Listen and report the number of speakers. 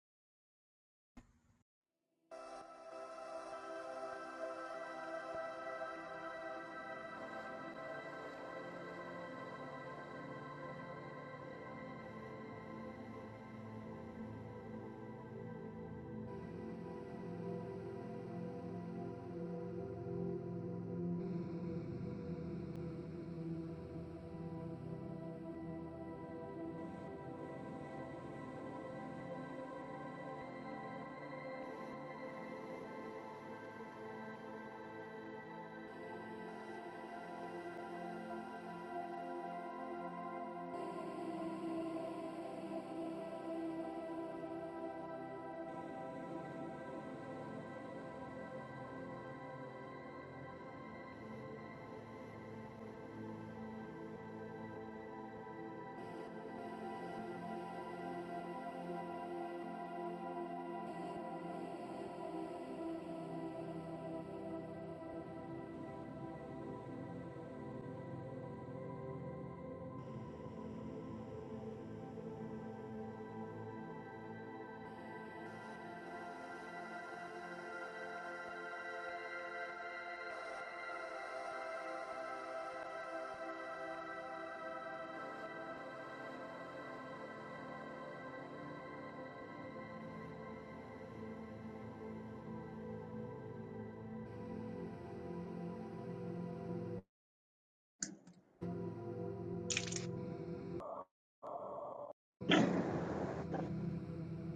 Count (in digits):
0